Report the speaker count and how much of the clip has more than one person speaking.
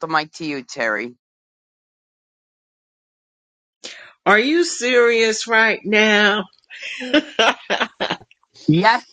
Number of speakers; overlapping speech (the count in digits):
2, no overlap